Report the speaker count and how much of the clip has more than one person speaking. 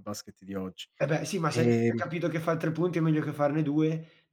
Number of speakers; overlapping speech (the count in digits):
2, about 12%